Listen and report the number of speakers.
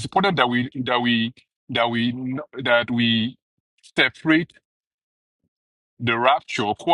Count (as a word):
one